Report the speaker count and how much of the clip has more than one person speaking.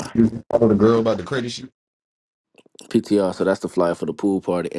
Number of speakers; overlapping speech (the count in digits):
2, no overlap